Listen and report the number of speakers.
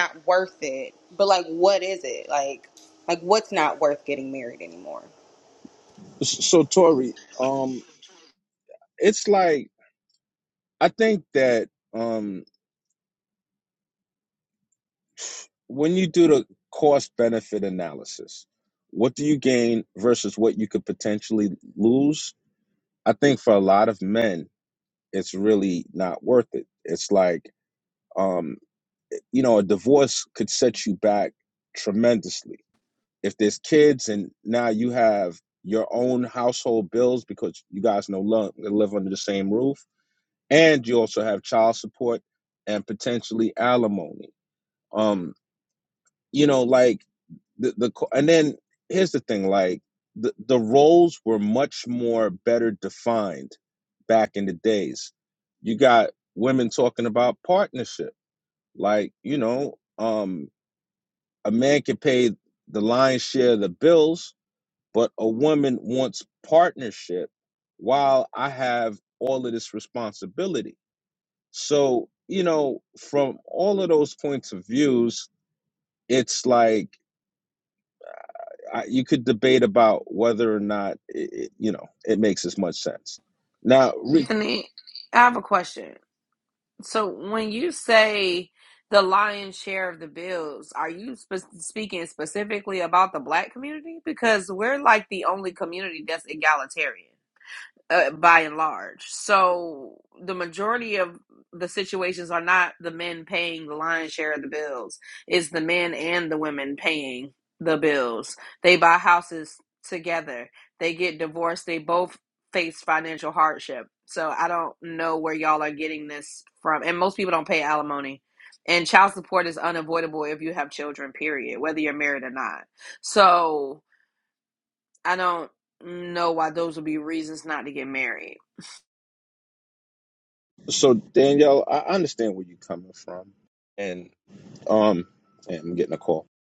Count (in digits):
3